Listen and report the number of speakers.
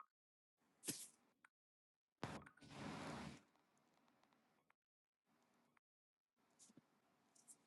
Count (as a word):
zero